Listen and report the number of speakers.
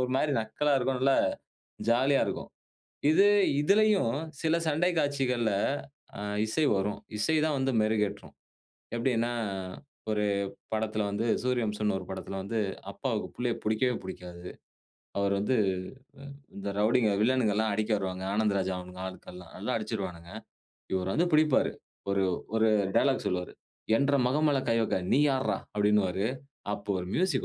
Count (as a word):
one